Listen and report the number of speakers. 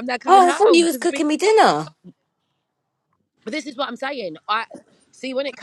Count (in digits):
2